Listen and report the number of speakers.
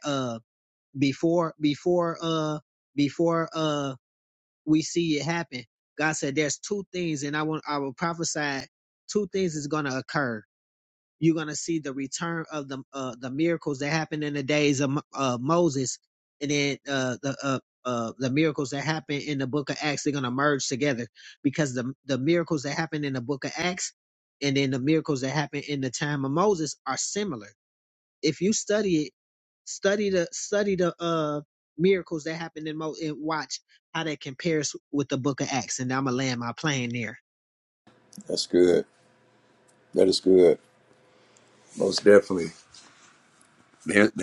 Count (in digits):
2